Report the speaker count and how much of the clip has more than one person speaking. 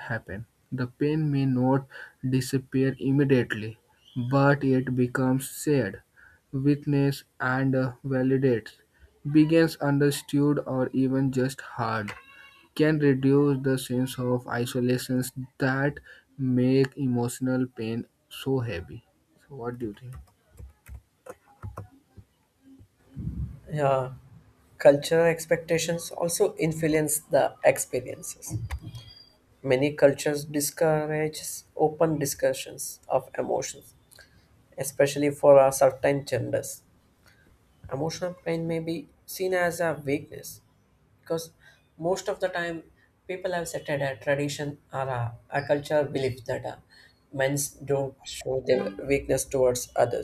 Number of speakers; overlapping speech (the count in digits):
2, no overlap